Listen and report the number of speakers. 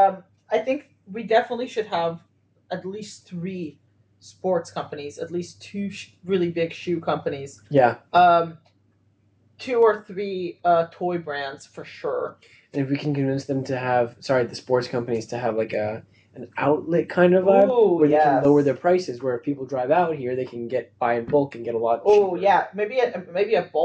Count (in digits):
2